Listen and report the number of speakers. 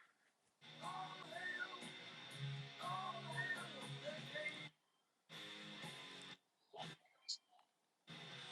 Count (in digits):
0